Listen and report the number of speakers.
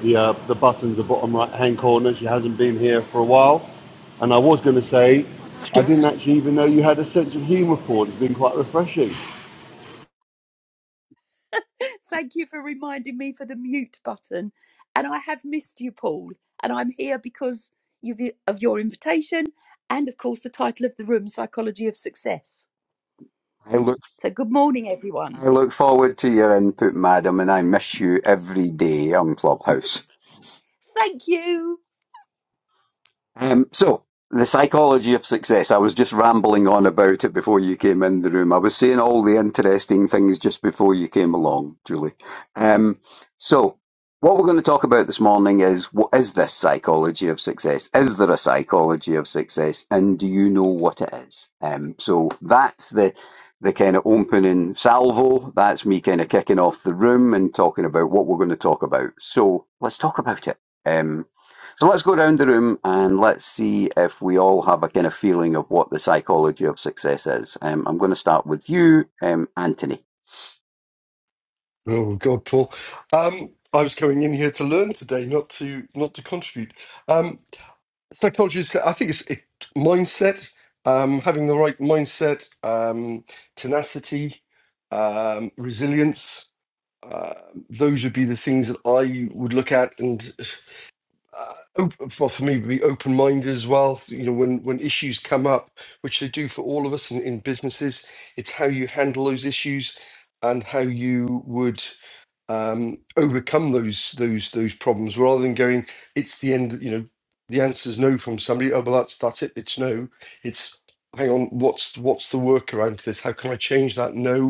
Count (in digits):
4